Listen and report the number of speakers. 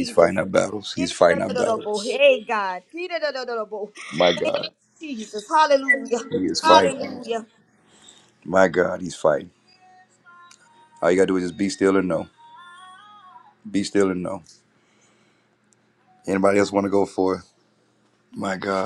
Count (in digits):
2